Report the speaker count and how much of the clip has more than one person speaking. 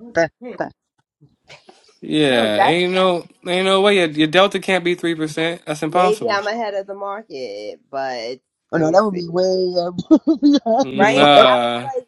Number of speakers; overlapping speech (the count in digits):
3, about 20%